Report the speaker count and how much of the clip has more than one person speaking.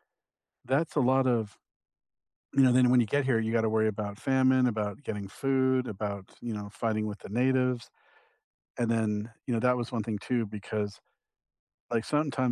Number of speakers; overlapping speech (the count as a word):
one, no overlap